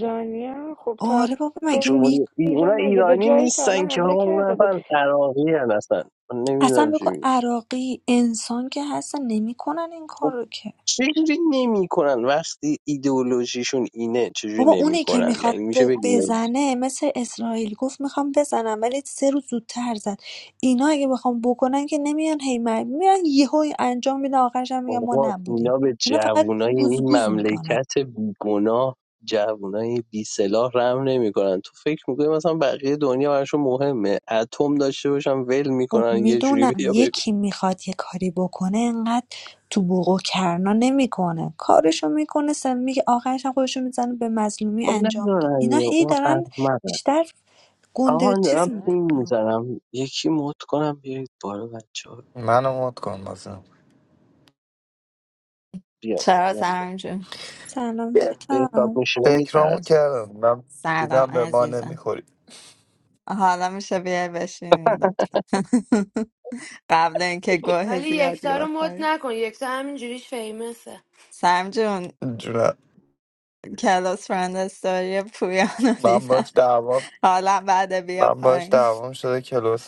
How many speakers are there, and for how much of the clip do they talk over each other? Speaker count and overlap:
6, about 21%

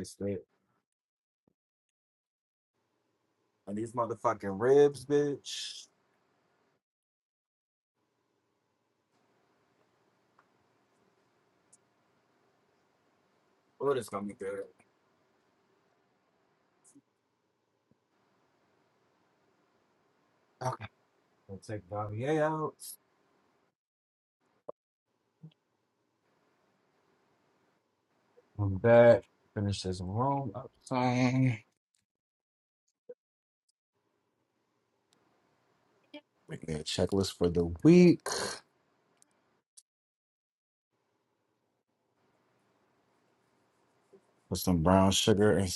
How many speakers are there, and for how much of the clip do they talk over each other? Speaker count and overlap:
1, no overlap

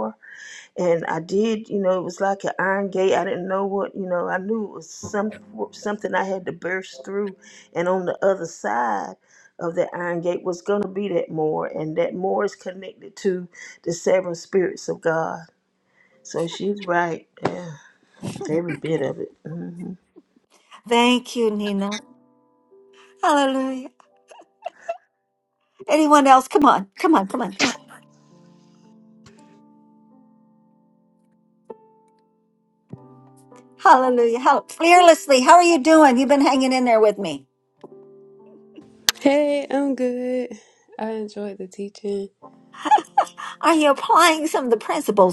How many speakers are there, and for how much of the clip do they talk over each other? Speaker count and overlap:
3, no overlap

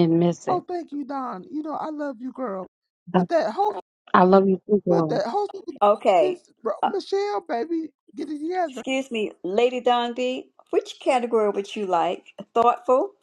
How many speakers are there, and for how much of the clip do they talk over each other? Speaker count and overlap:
3, about 7%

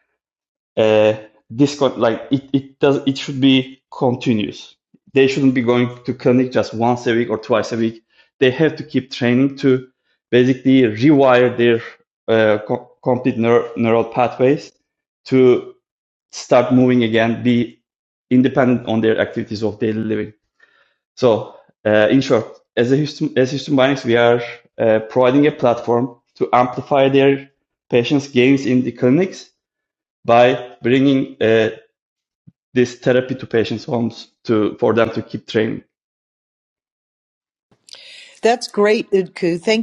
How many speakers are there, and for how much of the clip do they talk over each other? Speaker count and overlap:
2, no overlap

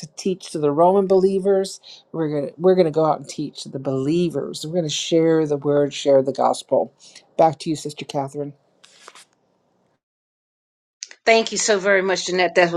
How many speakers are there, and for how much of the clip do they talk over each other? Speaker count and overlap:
2, no overlap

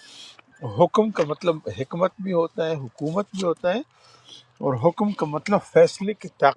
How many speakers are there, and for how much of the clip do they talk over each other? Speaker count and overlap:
1, no overlap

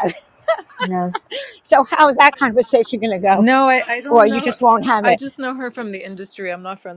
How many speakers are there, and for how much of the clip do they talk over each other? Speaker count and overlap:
2, about 11%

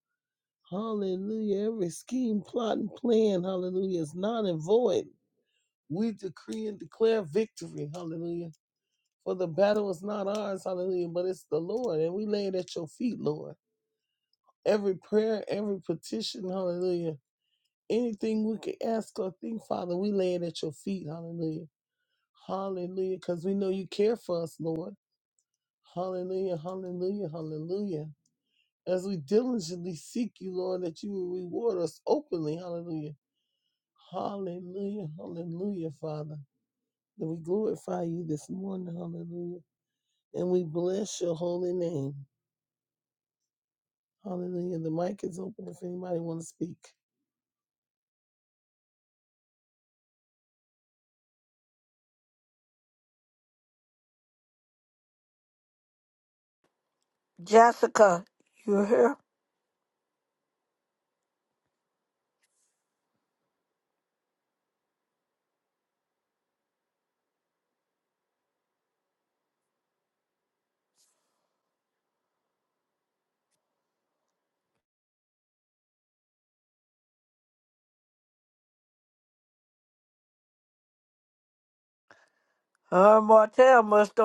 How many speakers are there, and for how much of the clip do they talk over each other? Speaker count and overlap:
2, no overlap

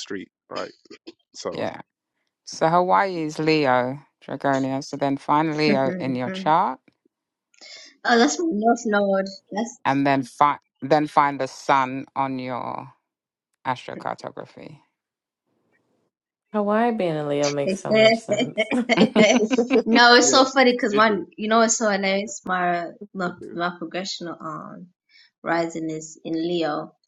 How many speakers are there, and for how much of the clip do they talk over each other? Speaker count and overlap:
4, about 5%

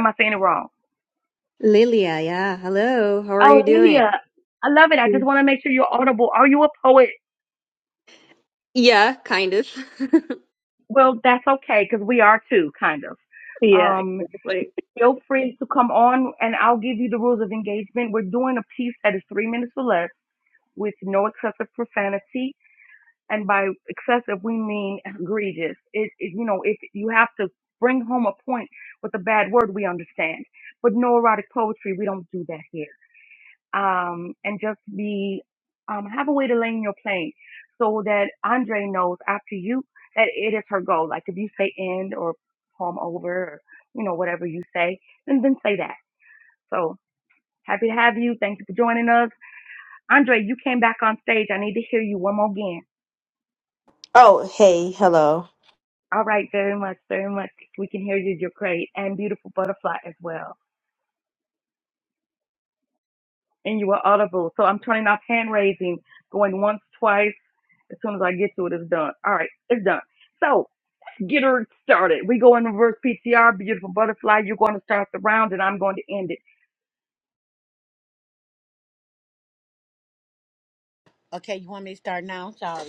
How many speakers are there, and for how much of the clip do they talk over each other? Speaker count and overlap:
4, about 2%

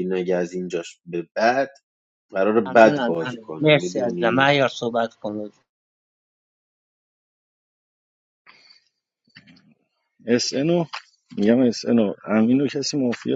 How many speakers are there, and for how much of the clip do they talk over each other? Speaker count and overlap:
3, about 14%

